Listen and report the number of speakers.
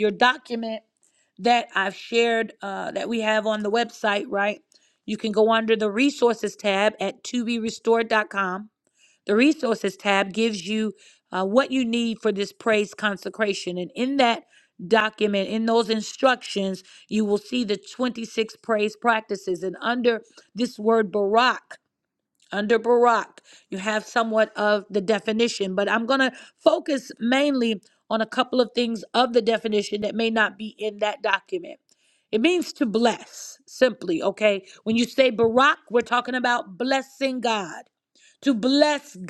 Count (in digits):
1